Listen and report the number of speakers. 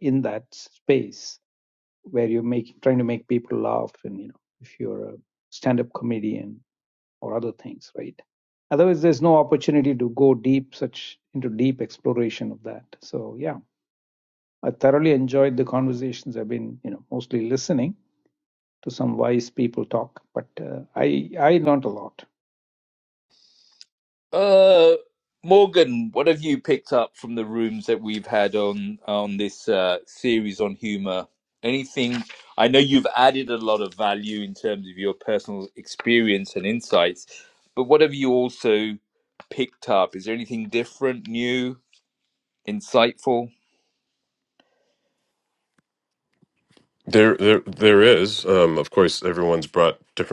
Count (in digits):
3